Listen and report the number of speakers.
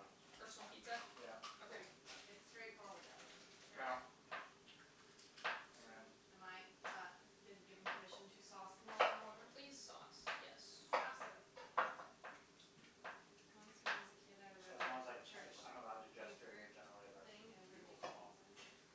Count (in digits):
4